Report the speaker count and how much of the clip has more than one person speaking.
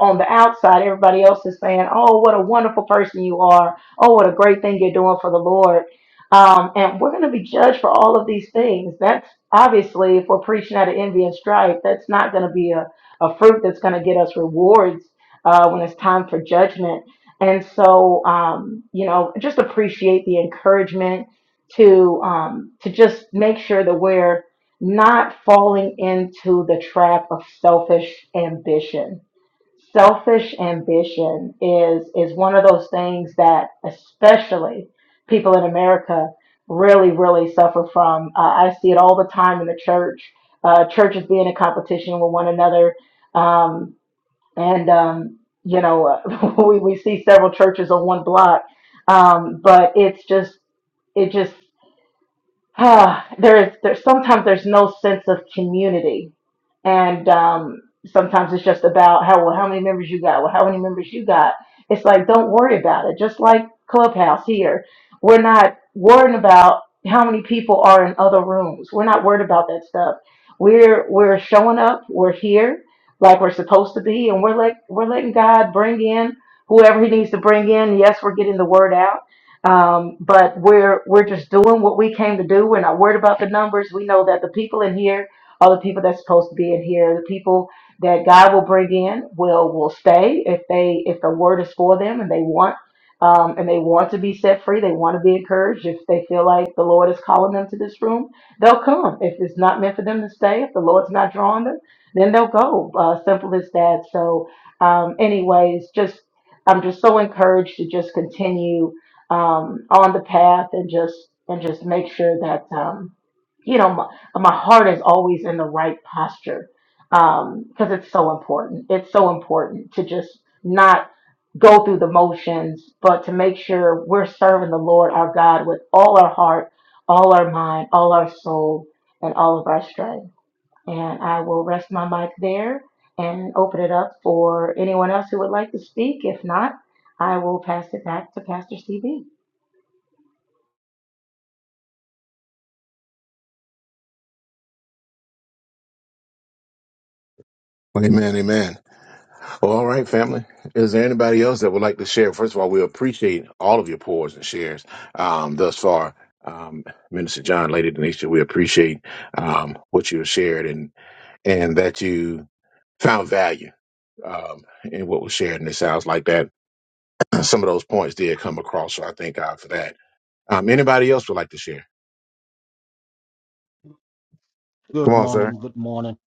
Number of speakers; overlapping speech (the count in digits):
3, under 1%